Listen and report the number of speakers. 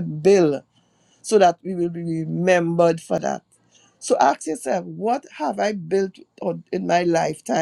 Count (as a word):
one